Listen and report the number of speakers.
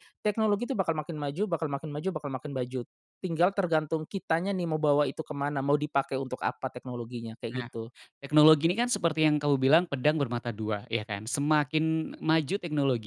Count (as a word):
two